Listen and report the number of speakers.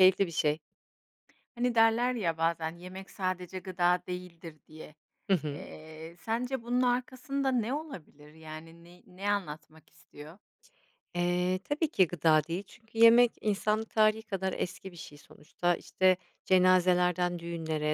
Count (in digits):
2